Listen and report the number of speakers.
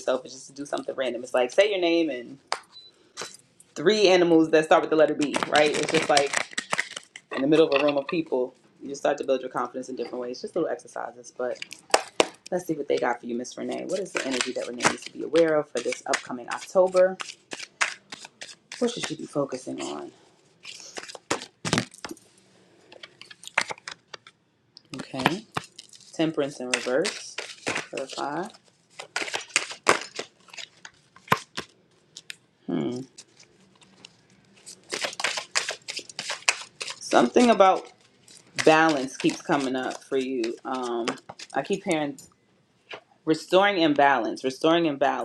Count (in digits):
1